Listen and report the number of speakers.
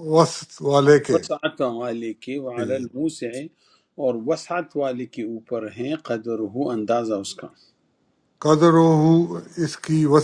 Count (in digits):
2